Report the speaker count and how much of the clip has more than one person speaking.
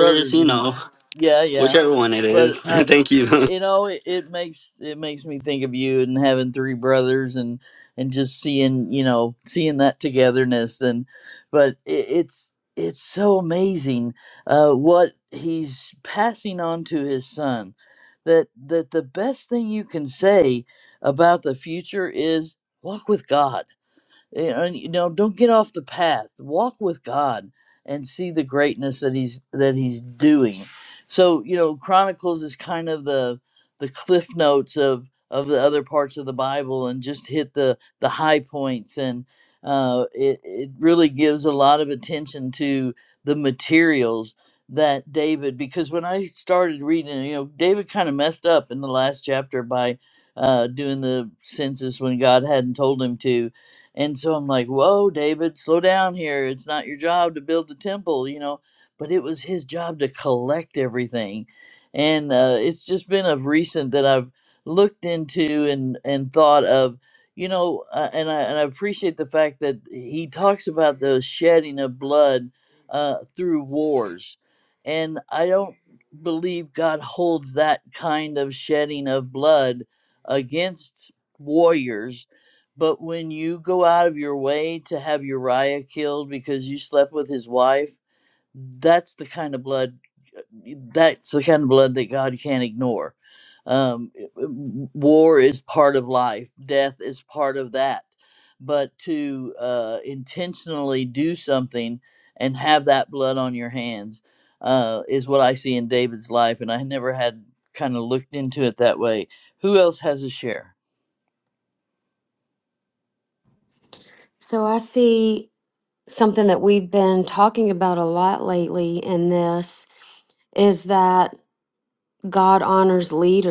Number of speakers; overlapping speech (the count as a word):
three, about 1%